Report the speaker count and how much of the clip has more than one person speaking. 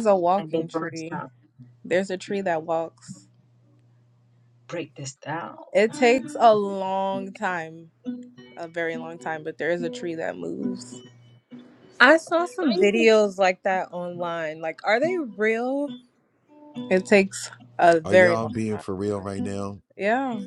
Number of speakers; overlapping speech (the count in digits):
4, about 13%